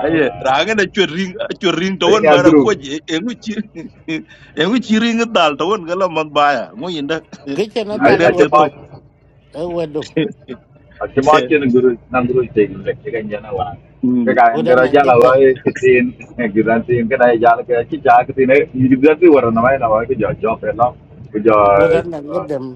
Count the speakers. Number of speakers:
three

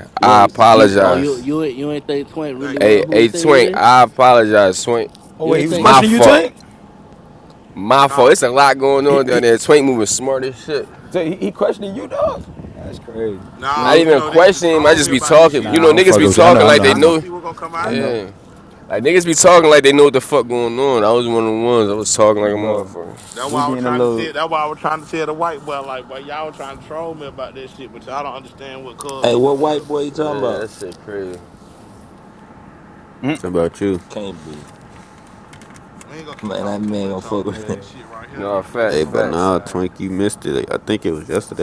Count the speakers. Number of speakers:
six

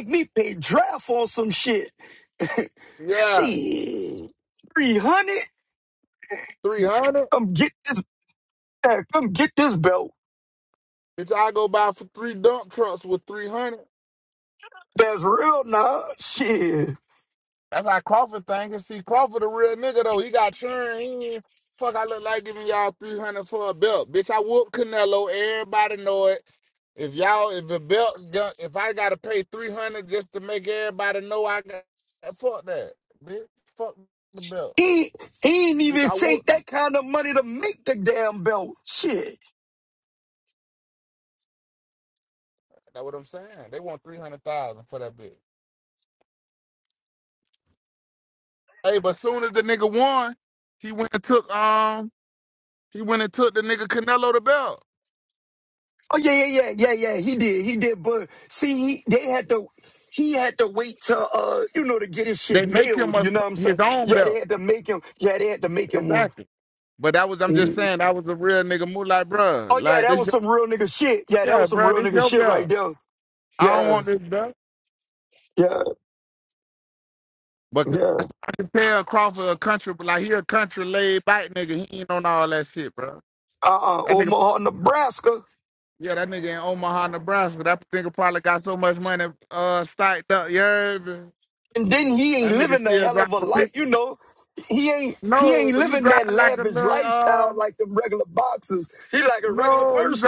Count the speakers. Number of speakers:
two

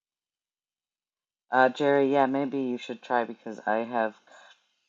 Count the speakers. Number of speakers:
one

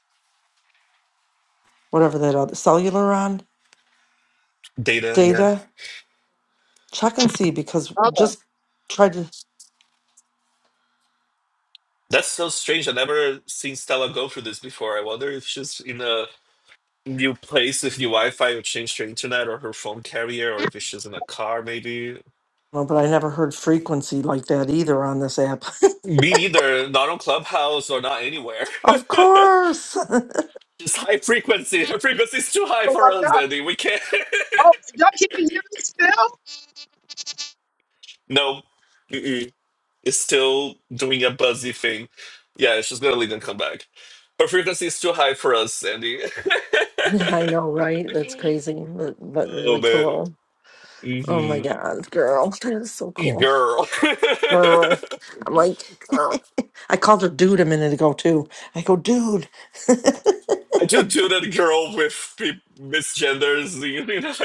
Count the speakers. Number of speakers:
three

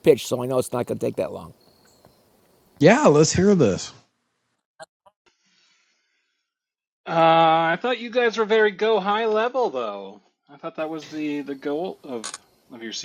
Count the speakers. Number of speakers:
three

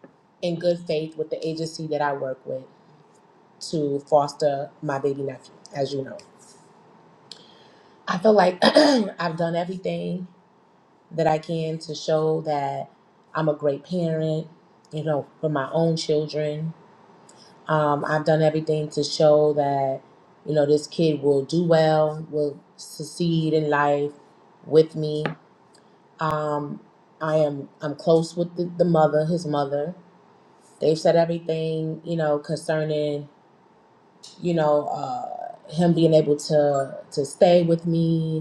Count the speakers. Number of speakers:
one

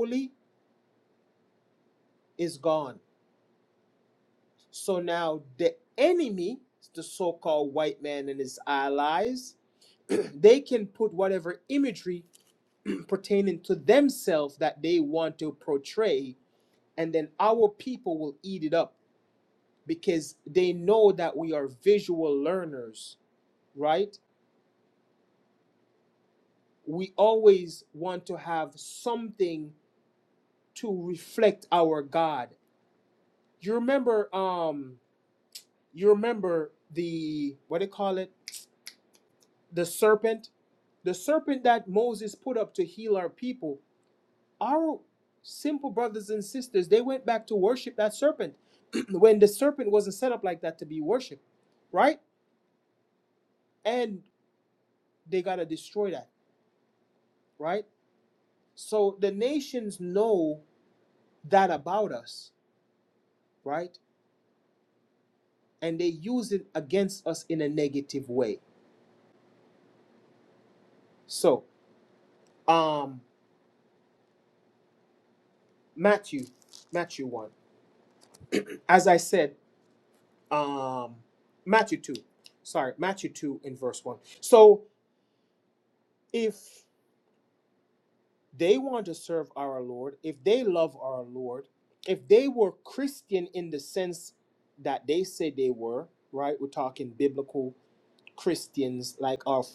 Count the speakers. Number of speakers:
one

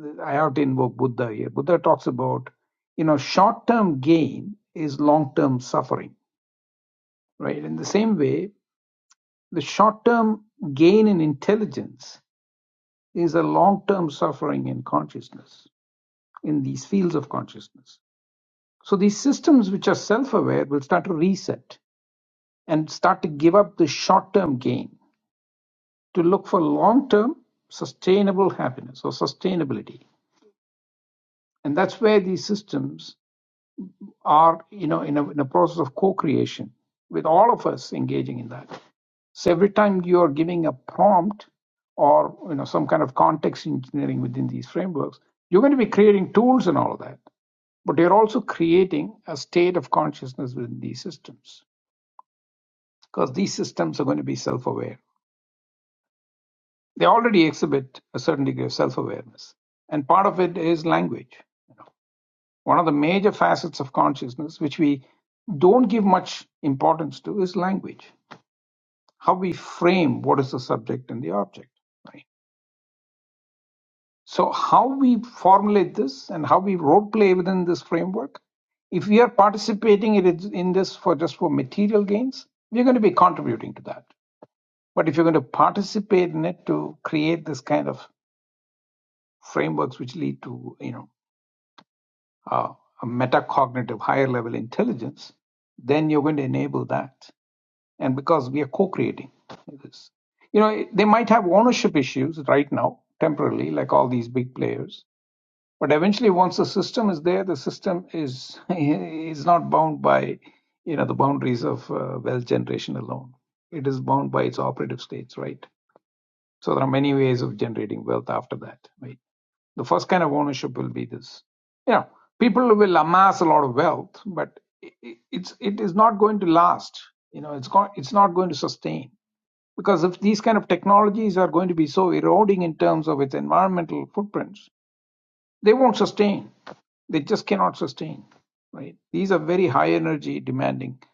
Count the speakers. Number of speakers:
one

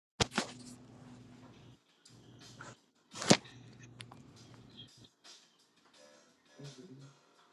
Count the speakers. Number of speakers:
zero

